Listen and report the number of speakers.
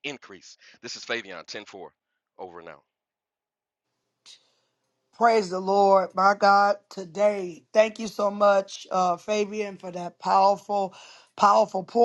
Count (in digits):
2